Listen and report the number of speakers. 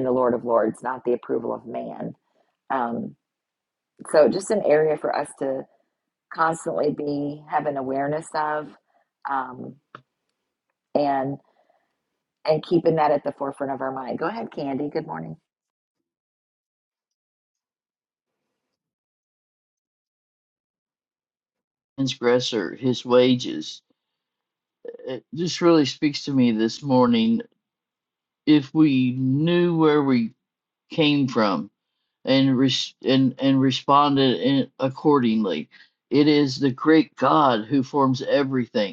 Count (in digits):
2